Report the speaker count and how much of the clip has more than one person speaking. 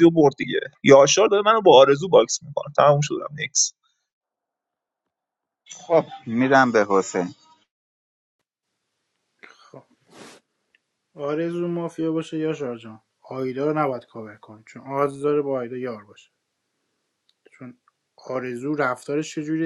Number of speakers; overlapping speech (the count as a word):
three, no overlap